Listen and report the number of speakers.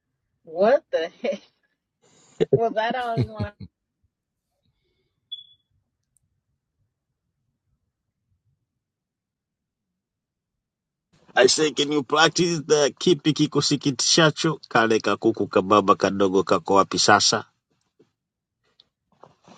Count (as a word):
two